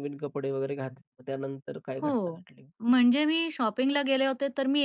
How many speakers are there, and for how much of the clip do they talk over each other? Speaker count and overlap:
2, about 8%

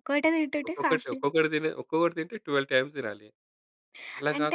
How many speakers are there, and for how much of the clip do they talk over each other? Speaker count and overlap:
2, about 18%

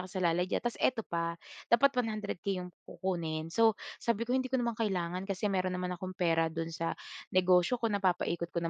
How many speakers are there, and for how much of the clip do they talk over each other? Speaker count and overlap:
1, no overlap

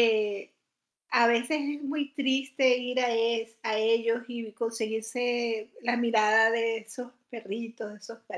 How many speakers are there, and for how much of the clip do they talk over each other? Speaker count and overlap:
1, no overlap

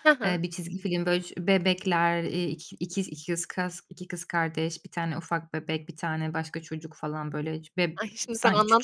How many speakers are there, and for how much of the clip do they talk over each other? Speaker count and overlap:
2, about 7%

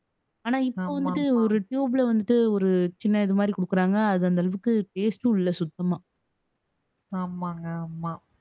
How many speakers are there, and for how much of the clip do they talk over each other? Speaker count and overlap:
2, about 9%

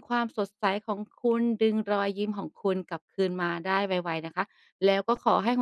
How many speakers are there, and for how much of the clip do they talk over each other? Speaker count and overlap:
1, no overlap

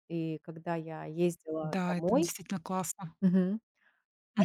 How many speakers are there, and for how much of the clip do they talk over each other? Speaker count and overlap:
2, about 14%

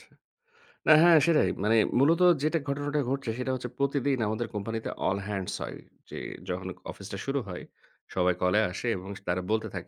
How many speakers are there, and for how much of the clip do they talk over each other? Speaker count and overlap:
1, no overlap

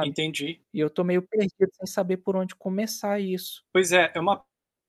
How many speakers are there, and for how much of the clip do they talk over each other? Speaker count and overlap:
2, about 2%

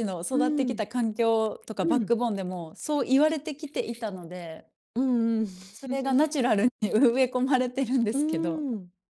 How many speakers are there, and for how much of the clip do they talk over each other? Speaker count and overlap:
2, about 10%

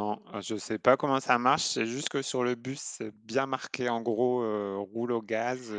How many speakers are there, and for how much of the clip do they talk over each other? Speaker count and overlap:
1, no overlap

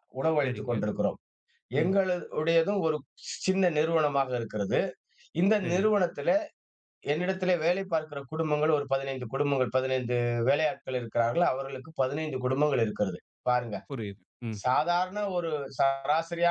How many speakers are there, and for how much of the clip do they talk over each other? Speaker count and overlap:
2, about 4%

